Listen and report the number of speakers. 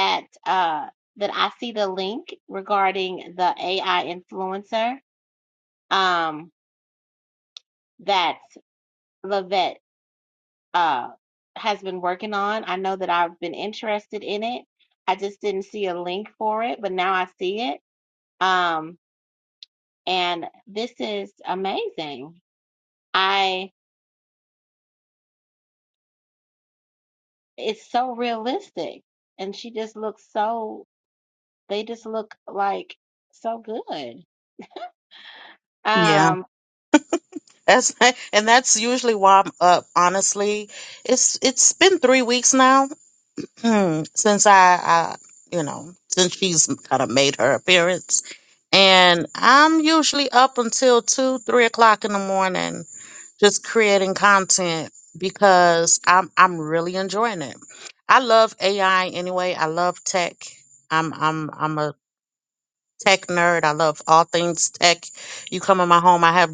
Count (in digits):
2